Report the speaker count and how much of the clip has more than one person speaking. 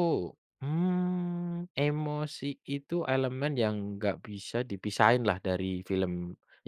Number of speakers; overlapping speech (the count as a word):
one, no overlap